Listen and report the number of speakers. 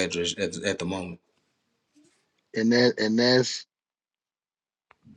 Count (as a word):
two